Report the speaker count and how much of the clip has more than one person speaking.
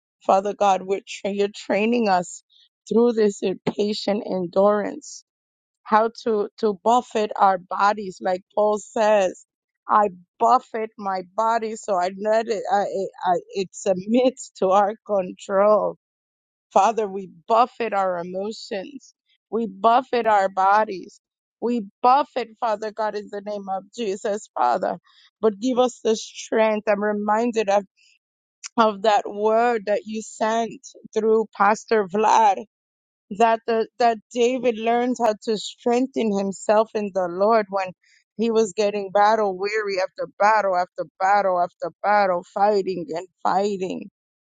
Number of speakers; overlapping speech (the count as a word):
one, no overlap